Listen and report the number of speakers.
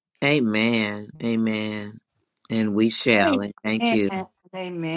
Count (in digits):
2